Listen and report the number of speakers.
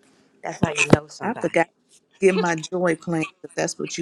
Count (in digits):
2